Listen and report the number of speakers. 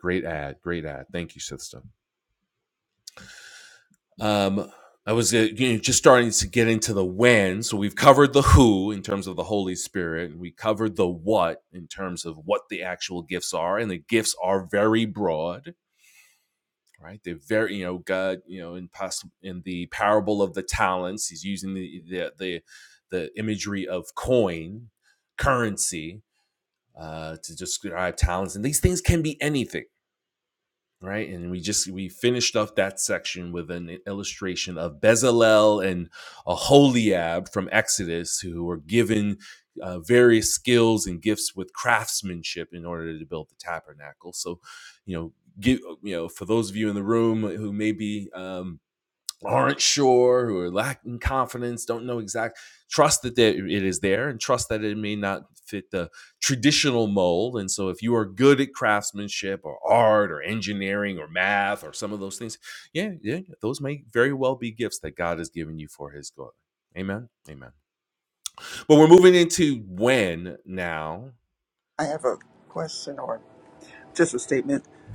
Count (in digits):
2